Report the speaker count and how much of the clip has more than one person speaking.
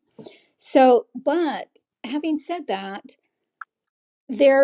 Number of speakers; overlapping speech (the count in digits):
1, no overlap